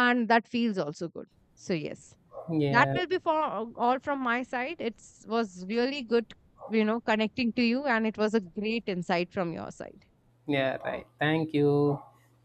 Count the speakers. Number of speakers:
2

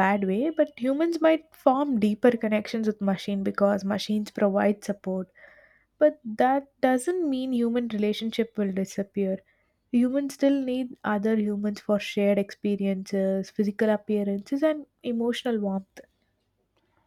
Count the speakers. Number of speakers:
1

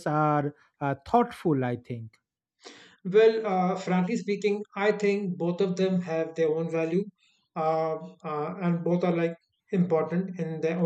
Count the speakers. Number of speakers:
2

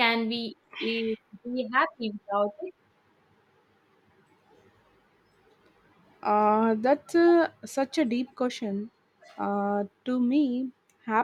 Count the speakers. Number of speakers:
2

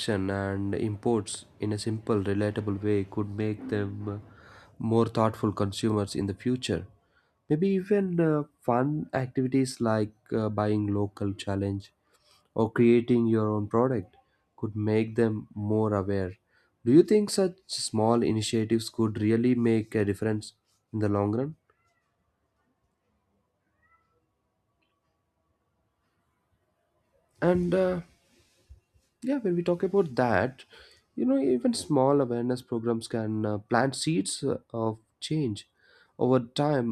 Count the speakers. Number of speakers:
1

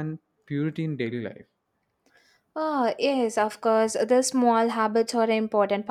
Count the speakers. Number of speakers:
2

